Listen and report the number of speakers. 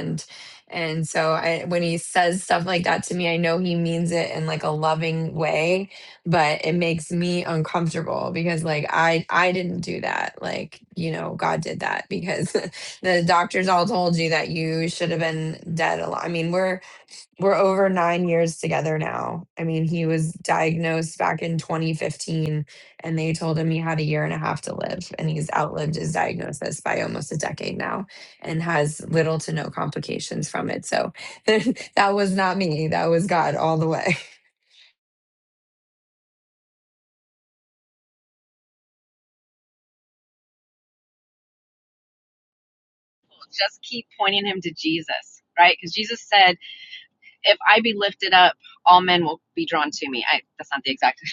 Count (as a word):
two